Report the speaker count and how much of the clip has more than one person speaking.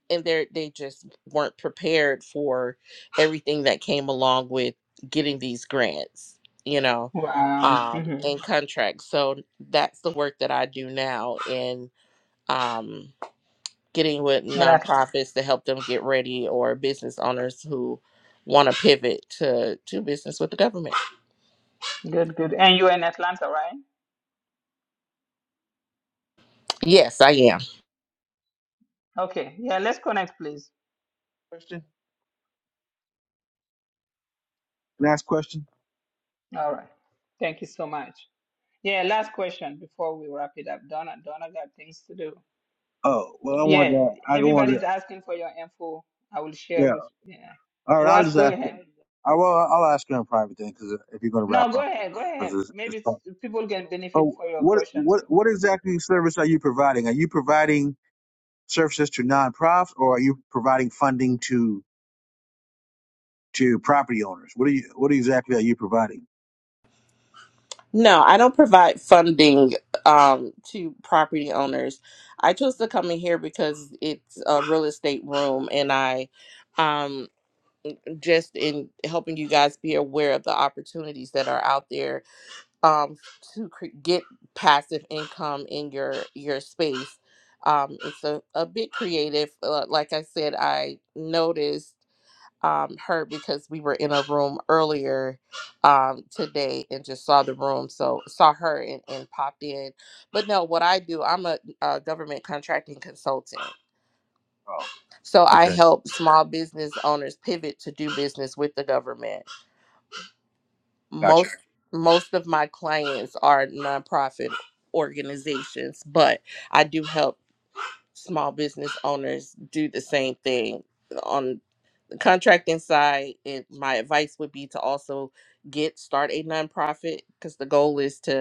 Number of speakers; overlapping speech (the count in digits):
3, about 4%